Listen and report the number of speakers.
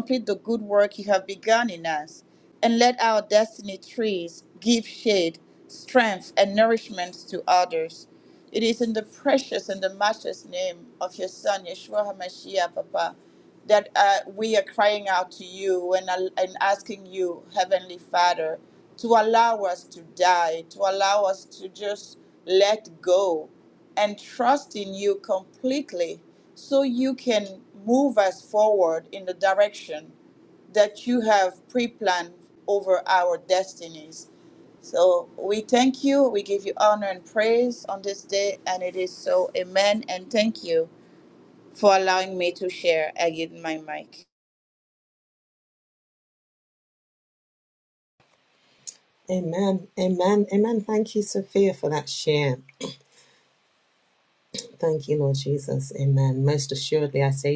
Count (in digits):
2